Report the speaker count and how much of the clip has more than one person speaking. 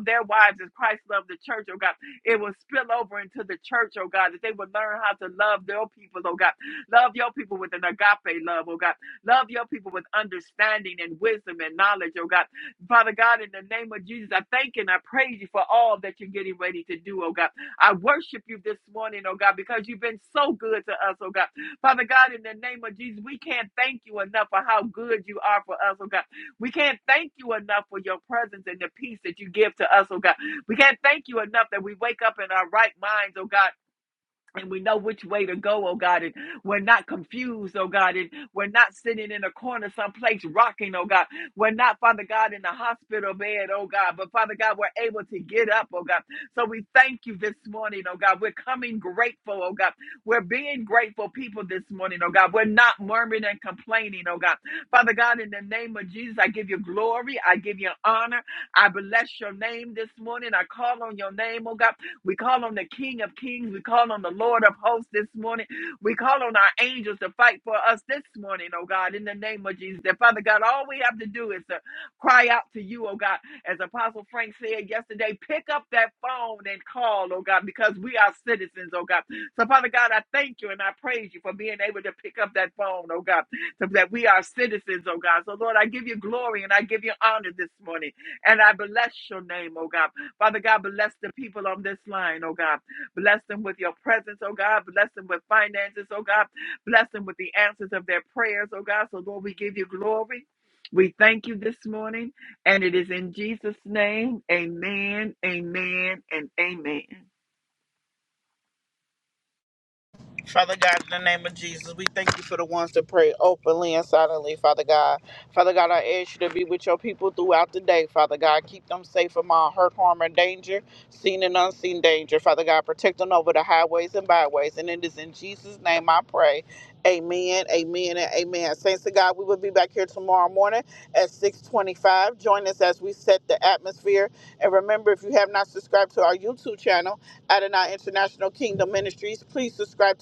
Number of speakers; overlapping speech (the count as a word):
two, no overlap